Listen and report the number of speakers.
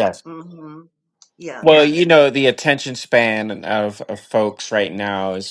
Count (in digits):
2